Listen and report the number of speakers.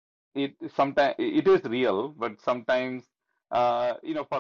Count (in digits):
1